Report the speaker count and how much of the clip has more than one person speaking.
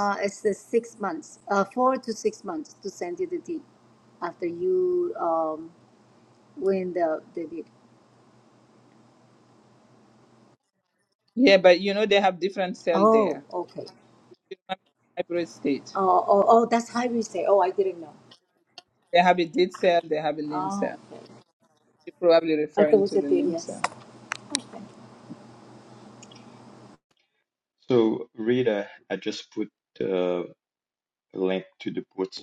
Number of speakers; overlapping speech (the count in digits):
3, about 6%